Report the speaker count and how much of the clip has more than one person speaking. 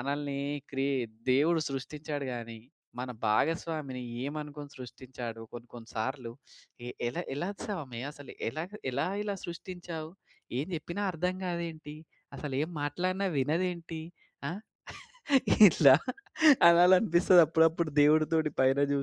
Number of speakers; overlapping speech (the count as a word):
one, no overlap